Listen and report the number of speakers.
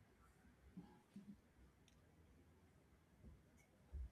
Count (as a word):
zero